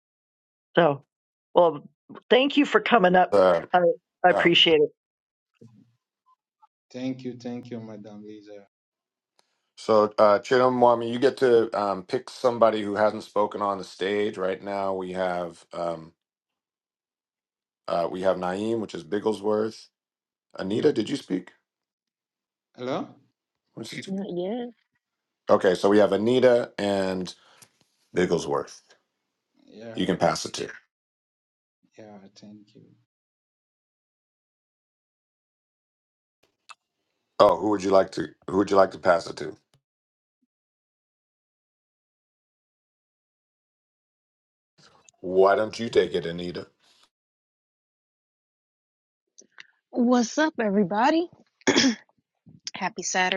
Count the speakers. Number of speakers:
4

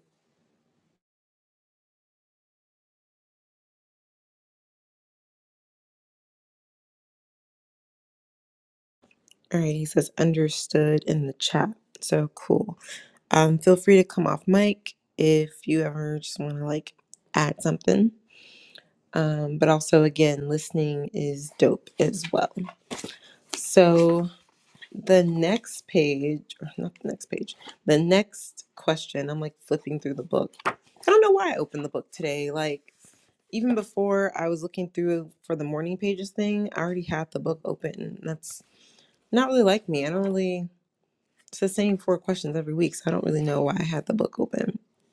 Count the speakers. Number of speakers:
1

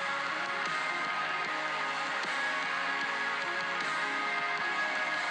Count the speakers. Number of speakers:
0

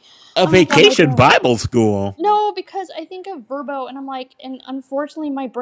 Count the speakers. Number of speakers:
2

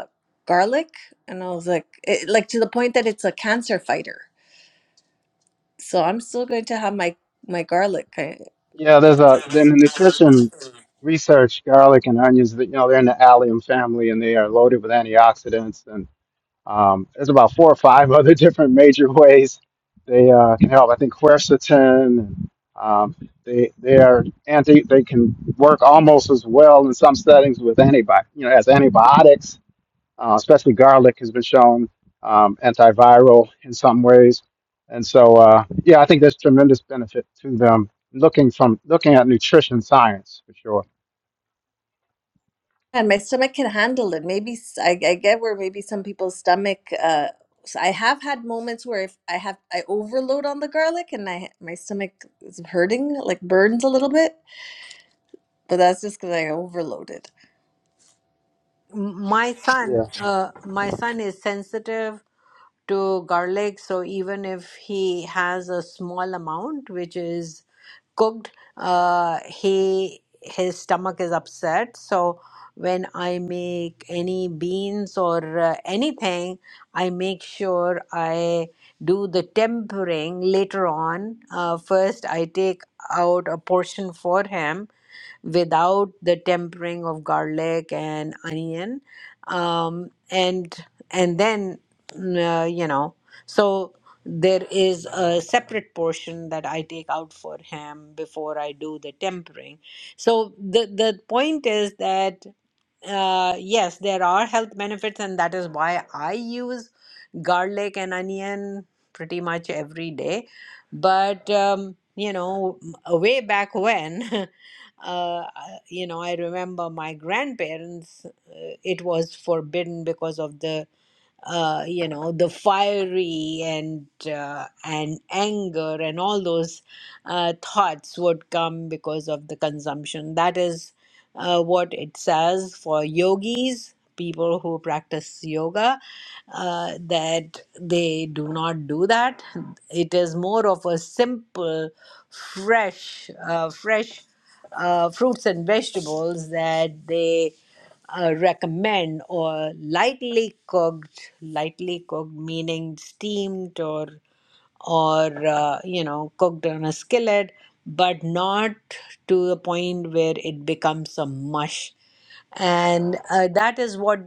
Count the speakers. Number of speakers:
3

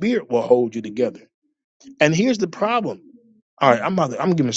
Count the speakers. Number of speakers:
1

